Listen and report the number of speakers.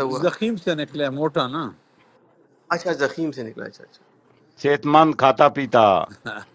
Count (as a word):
three